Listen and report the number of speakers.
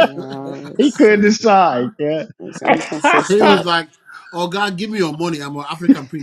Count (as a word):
three